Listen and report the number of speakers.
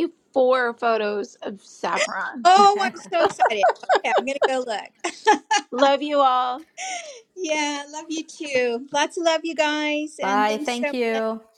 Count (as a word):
three